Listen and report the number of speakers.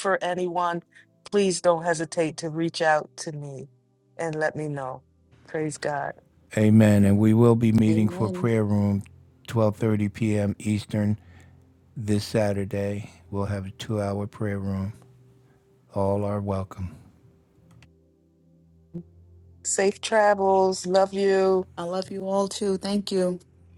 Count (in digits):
3